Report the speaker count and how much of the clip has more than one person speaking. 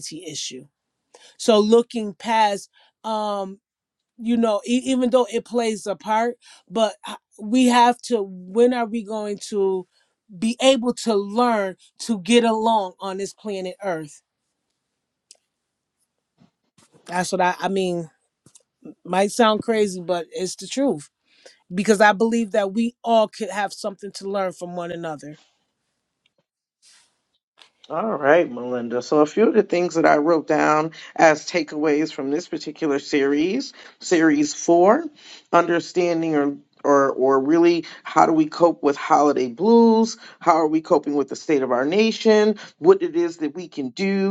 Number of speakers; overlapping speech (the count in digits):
2, no overlap